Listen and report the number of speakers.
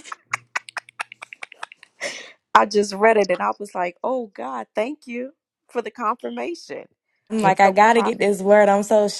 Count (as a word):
two